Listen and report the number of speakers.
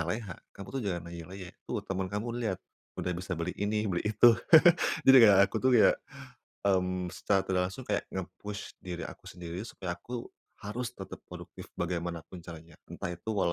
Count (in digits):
1